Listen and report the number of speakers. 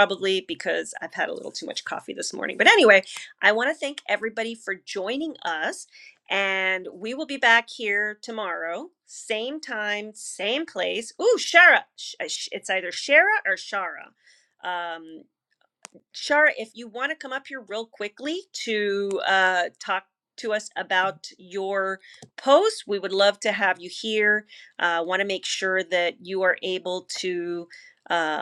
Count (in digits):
1